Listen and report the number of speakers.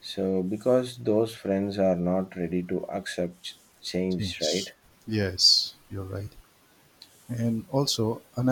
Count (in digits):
2